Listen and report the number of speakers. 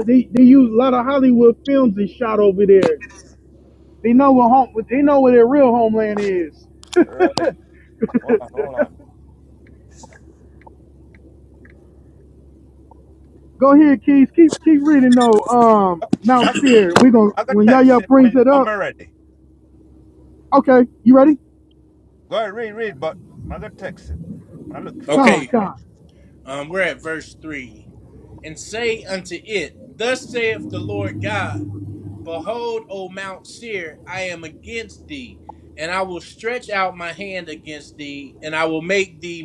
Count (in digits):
3